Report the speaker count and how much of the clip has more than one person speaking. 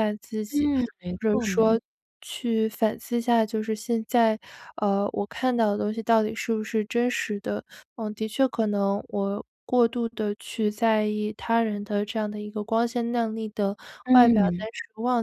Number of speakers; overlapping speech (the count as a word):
two, about 8%